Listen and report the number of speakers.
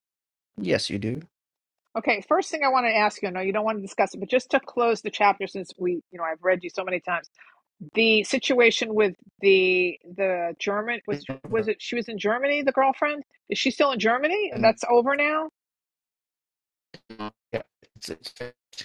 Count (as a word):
two